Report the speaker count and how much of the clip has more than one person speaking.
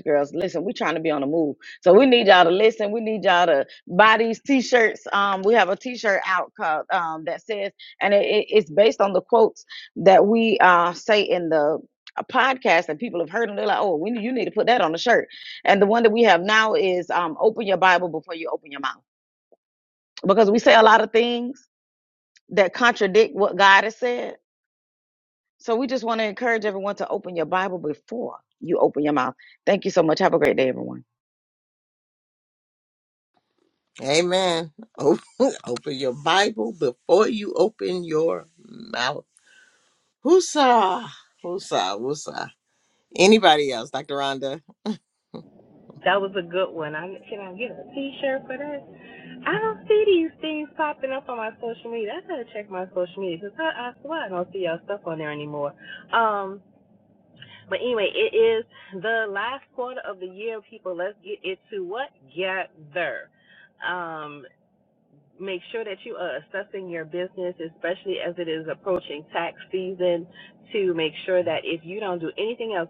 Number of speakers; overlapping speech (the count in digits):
3, no overlap